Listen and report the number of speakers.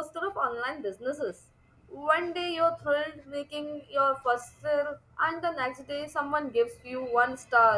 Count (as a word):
one